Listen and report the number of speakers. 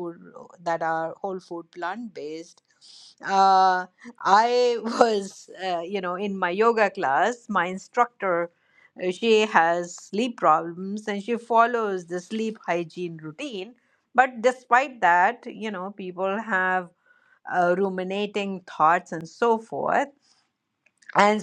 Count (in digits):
1